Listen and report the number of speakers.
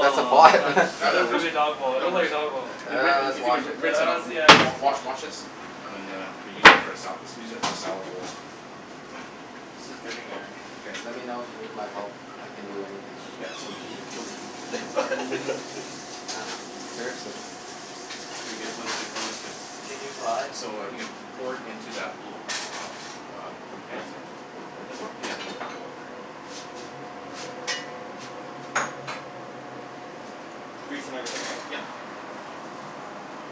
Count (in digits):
4